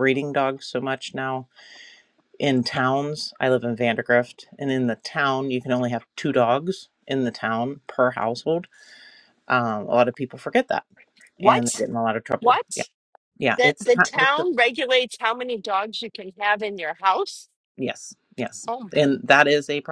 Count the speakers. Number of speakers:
2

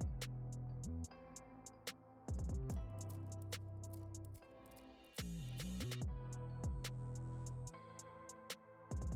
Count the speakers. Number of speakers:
0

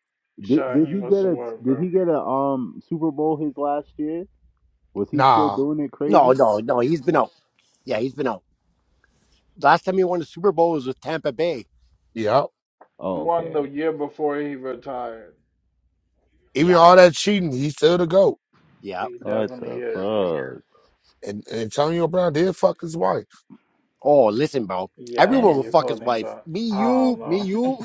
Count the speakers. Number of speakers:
4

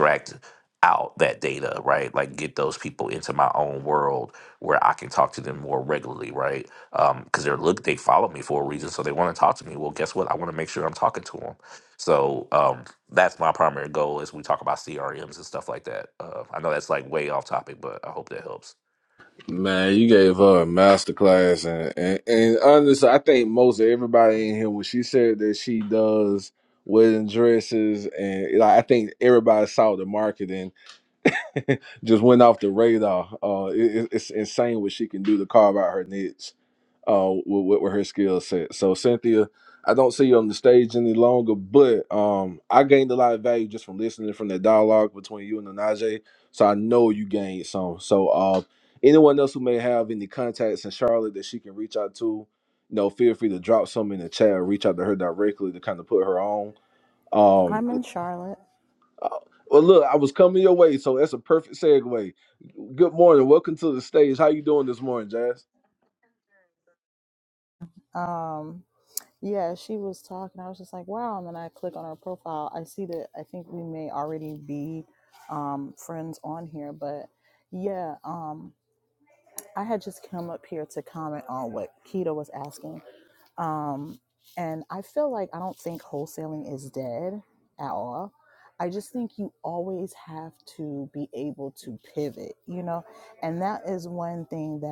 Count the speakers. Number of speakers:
3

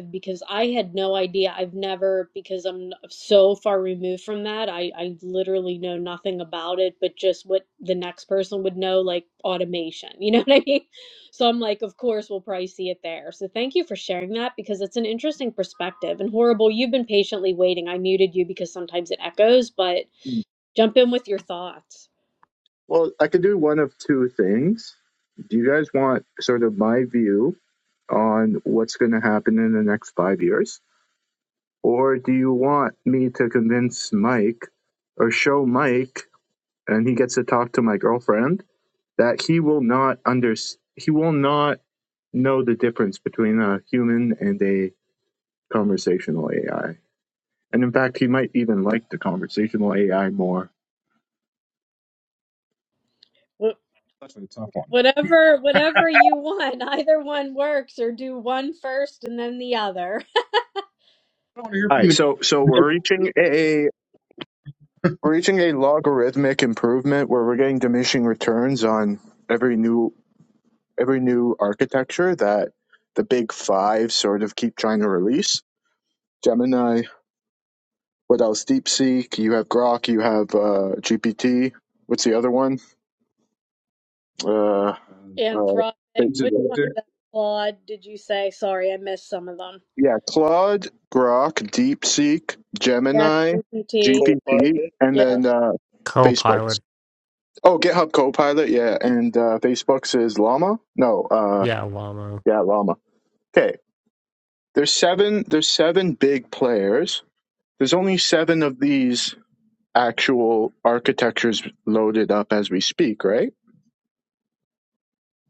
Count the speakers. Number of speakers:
4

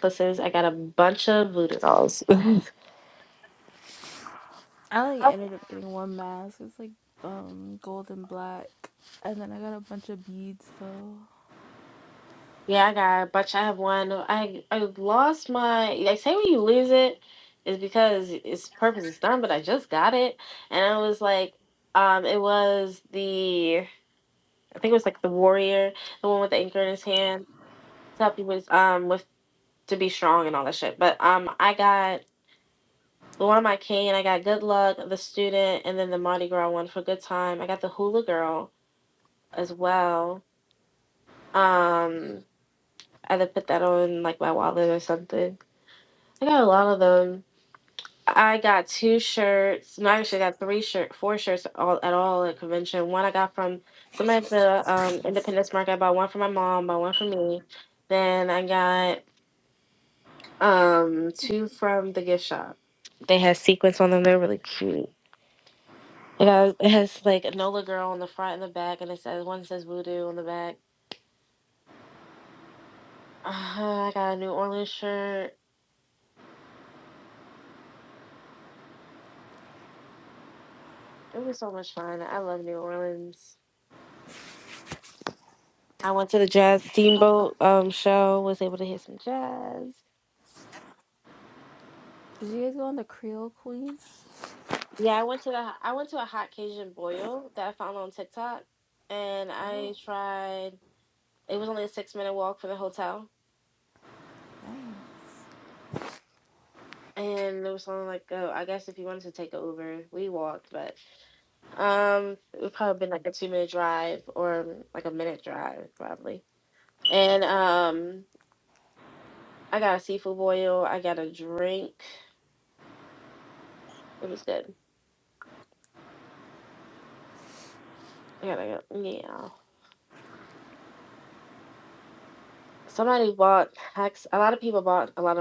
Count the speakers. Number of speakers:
2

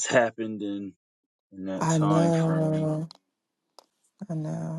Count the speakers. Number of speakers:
2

